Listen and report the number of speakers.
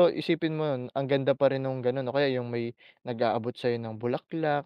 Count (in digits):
1